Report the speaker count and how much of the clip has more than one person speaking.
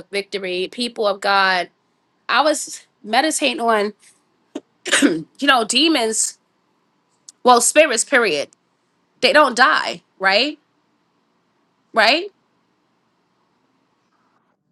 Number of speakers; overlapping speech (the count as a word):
one, no overlap